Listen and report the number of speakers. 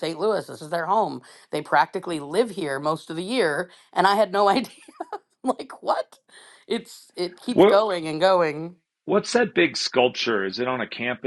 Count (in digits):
2